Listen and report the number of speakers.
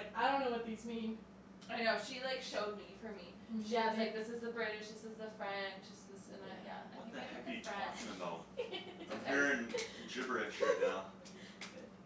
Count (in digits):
3